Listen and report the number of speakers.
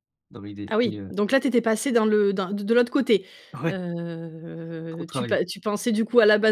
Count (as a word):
two